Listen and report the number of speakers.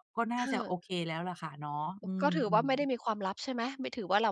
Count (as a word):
two